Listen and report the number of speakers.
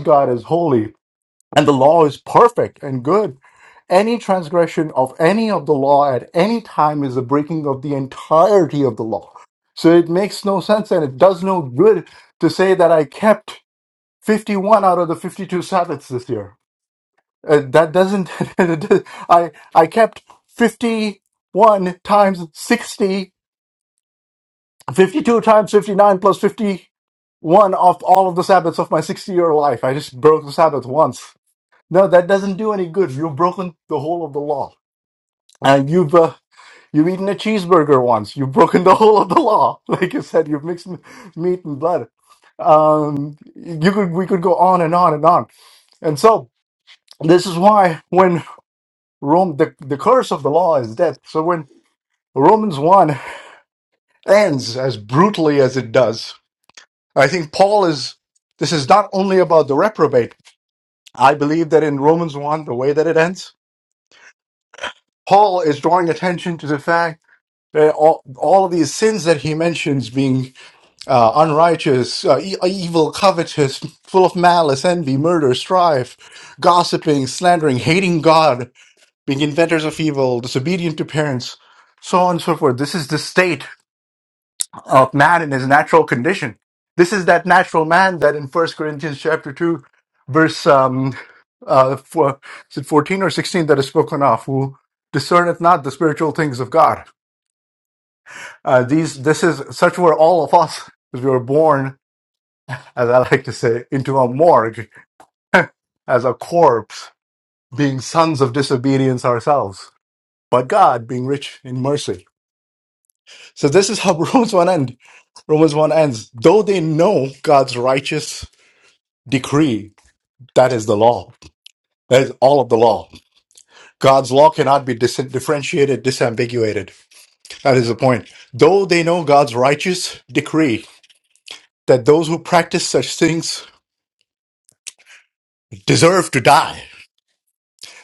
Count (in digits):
1